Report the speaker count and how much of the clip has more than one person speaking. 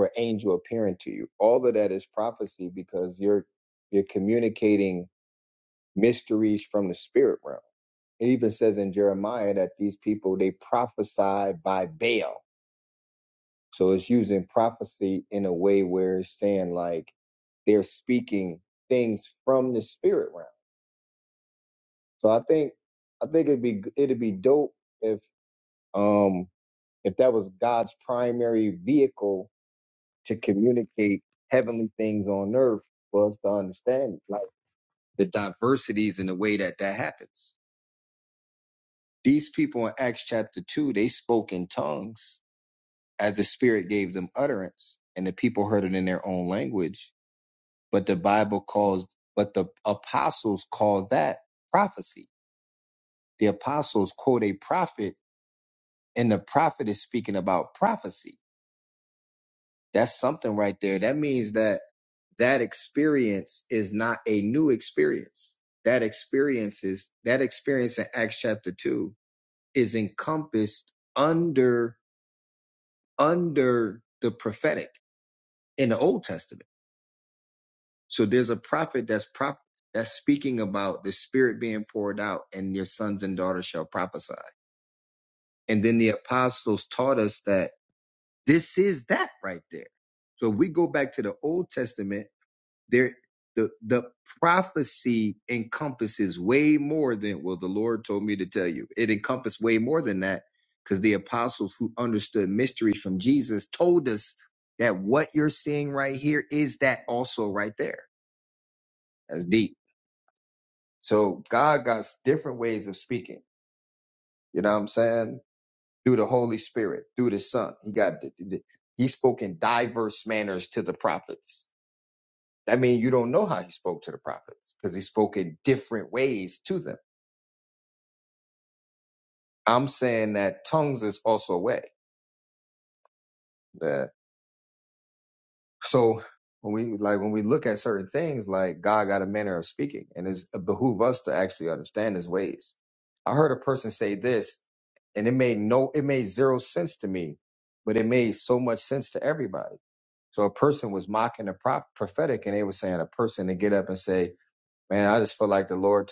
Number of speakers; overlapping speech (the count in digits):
1, no overlap